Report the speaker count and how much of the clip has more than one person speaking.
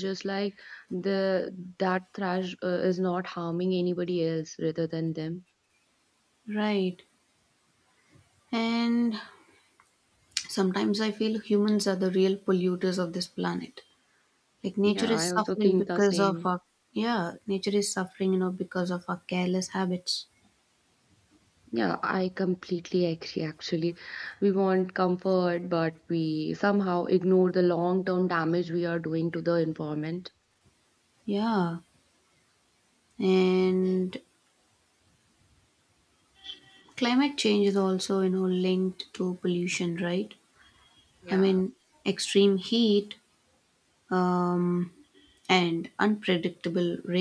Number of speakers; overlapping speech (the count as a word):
two, about 4%